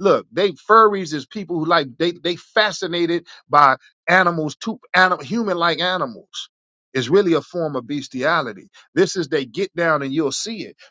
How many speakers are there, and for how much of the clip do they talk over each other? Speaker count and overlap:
1, no overlap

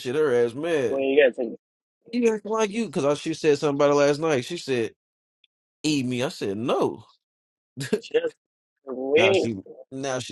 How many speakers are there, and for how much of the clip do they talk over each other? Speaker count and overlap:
2, about 4%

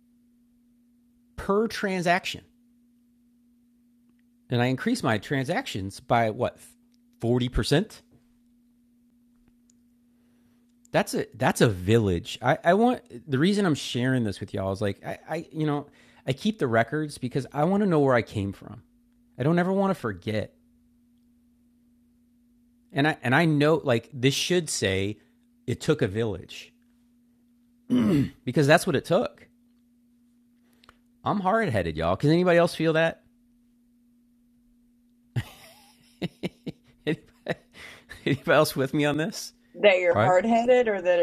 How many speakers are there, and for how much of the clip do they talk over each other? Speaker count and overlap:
2, under 1%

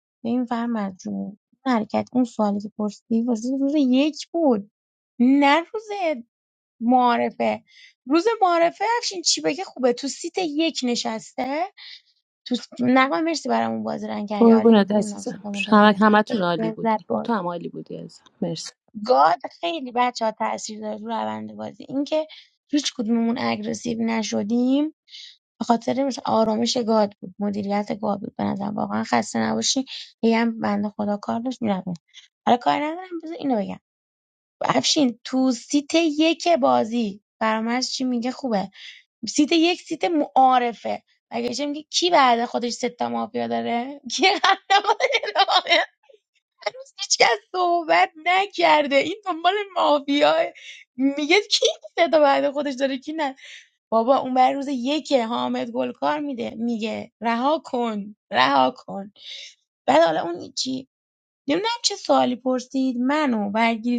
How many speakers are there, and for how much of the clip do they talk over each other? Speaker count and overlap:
2, about 4%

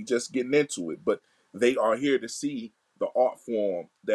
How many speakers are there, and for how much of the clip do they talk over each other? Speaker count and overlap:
1, no overlap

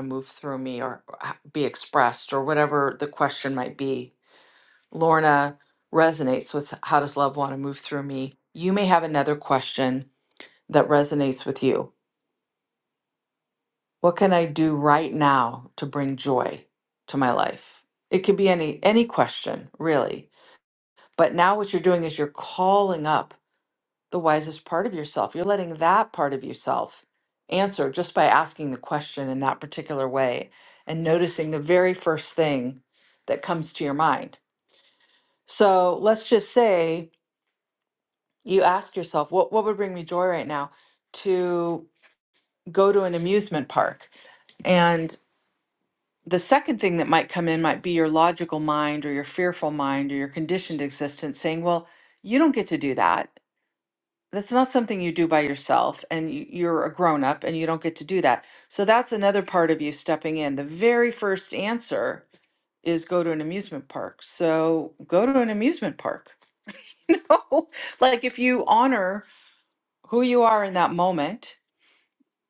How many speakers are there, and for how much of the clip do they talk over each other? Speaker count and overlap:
1, no overlap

